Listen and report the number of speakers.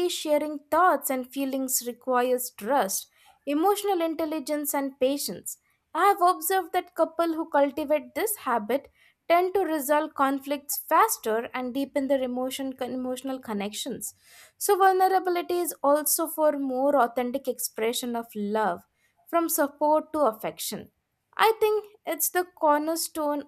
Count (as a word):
one